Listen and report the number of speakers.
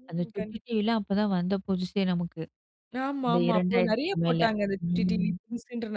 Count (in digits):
2